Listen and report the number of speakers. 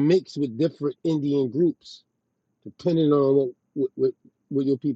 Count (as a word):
one